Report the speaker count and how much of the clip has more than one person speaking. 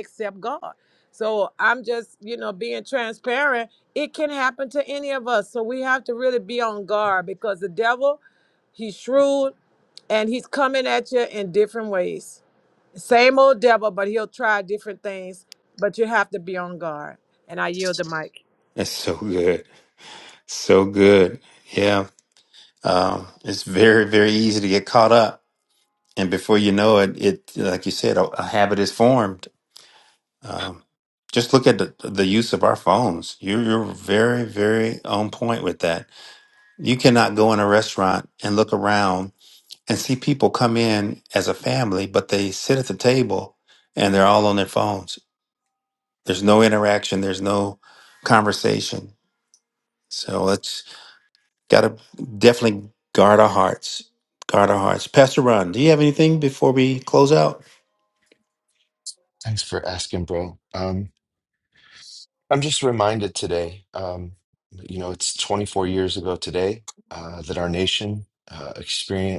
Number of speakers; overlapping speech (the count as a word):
three, no overlap